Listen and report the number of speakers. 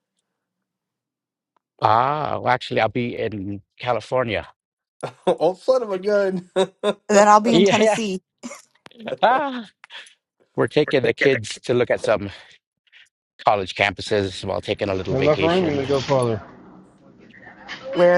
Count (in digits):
4